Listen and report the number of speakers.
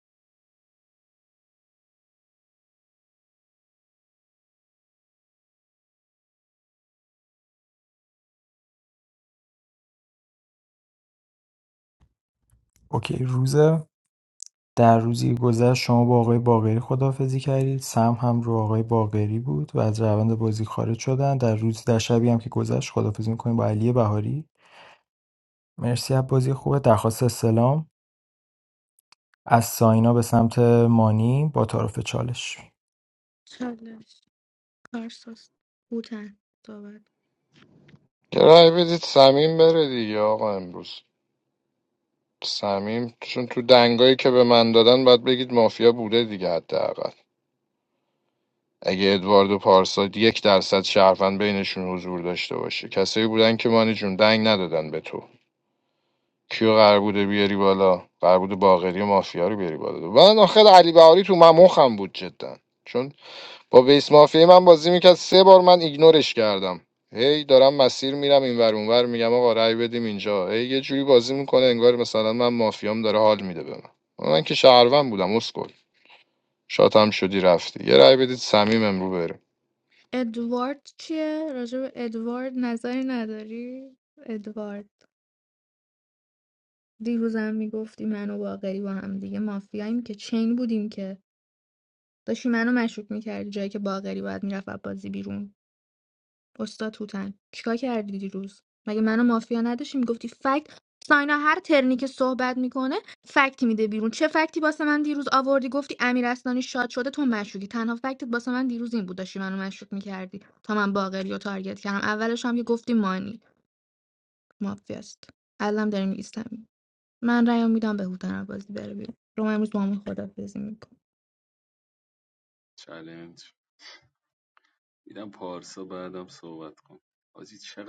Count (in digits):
4